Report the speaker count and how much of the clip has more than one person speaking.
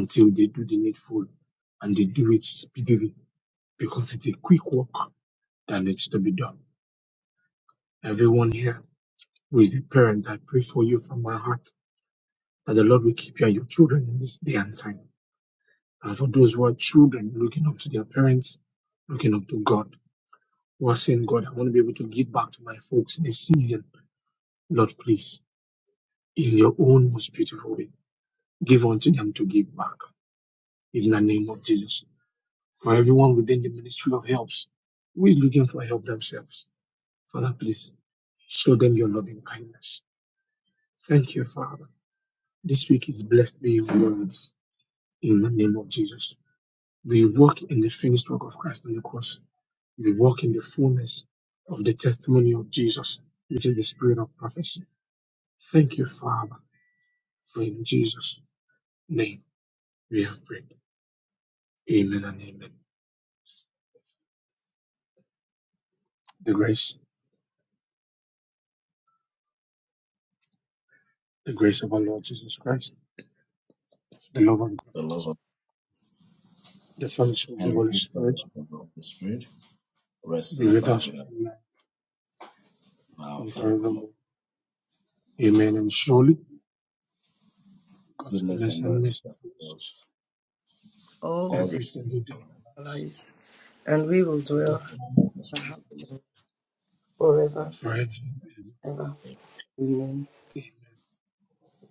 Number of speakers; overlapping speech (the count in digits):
3, about 6%